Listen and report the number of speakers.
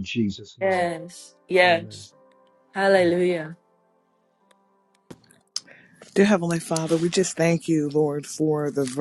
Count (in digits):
3